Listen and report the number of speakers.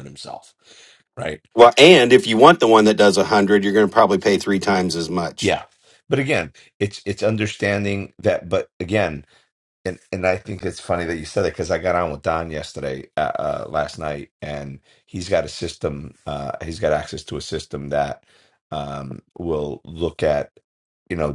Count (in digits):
2